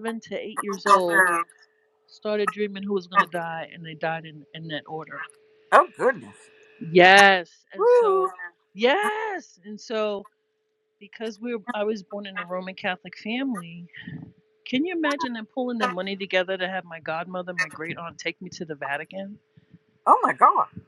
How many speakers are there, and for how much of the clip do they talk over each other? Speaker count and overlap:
2, about 2%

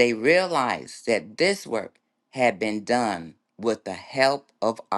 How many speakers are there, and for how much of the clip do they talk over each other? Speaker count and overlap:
1, no overlap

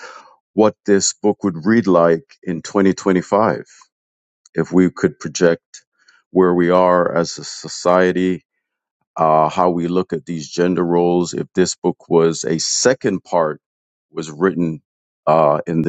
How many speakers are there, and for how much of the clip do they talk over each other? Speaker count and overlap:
1, no overlap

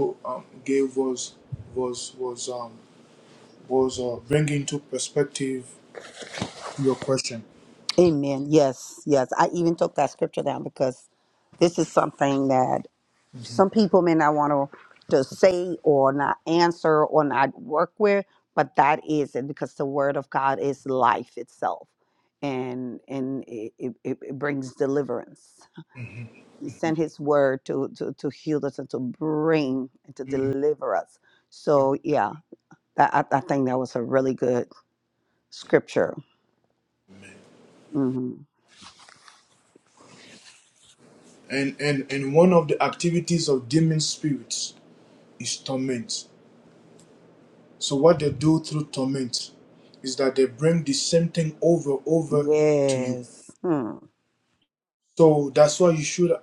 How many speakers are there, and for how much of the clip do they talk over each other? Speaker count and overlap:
2, about 1%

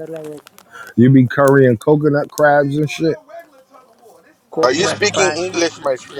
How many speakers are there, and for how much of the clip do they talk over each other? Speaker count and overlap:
3, about 12%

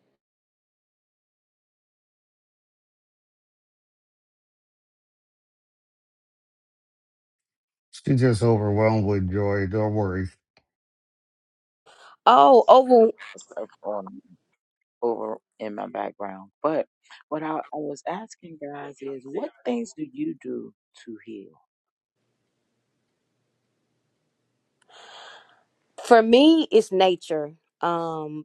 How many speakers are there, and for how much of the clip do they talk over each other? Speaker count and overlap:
3, no overlap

